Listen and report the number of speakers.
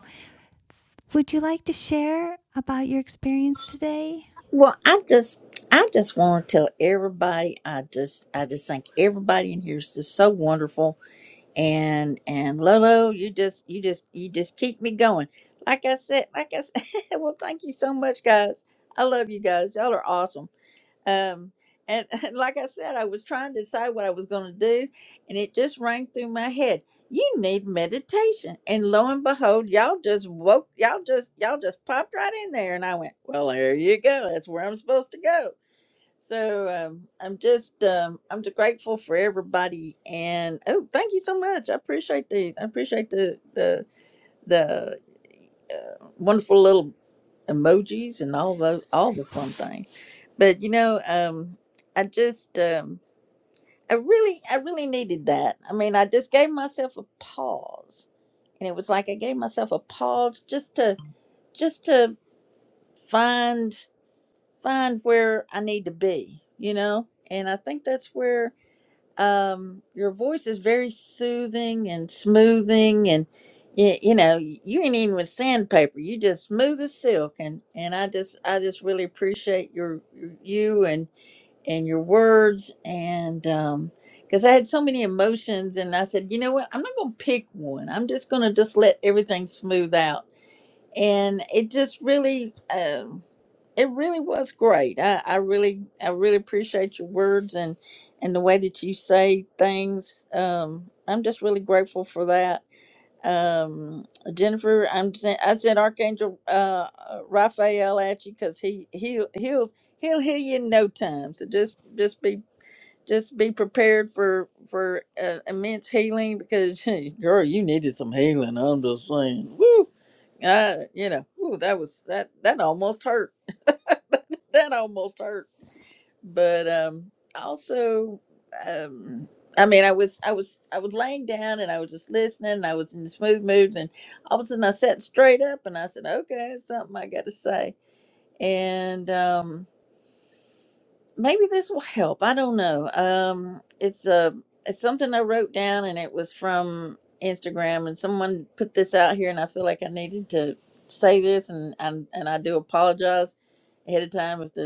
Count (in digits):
2